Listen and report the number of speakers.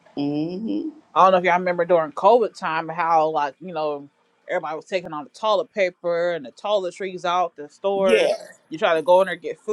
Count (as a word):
two